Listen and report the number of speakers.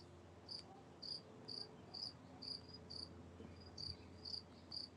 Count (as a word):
zero